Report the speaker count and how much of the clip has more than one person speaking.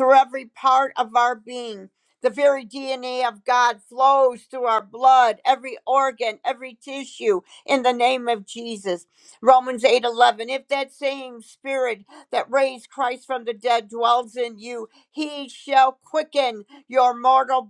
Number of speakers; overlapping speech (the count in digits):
1, no overlap